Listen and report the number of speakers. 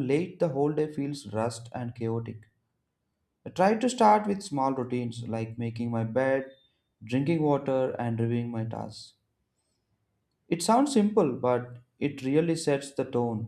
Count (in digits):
1